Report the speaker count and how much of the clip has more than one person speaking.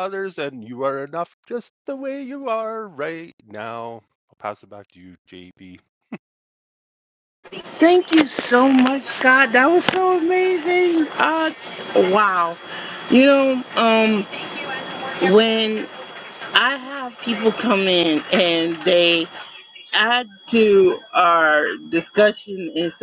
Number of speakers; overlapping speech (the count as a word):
two, no overlap